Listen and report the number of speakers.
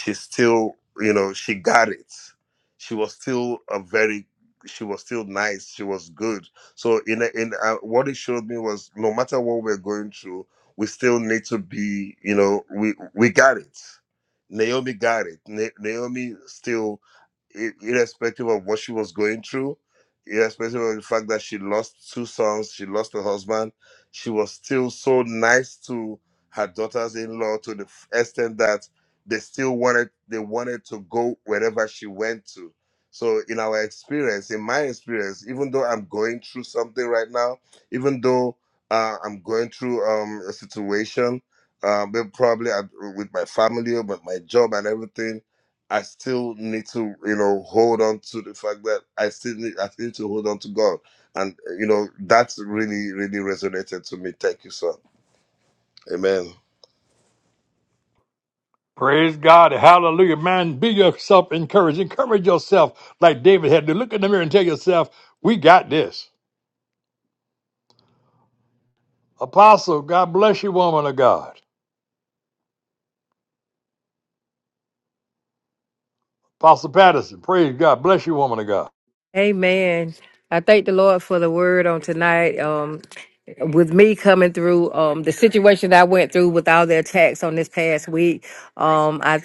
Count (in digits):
3